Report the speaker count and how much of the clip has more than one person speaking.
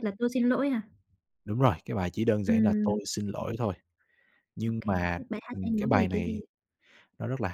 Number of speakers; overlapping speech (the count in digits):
2, about 25%